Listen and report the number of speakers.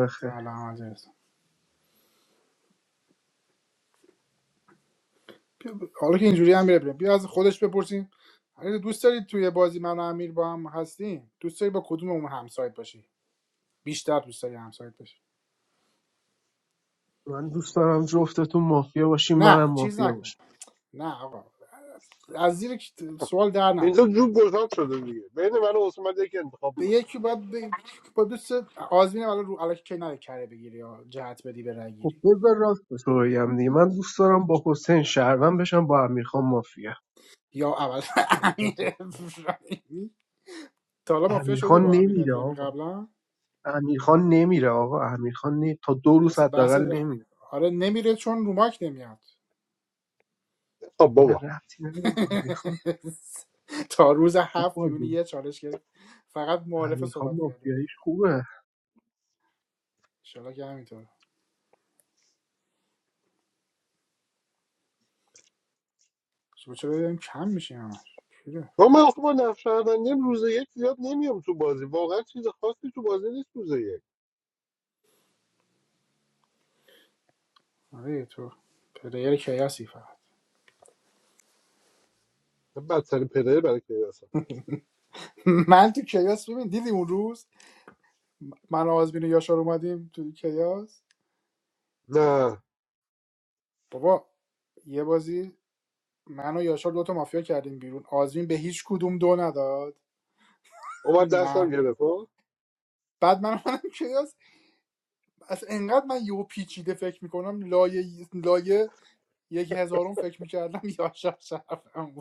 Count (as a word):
three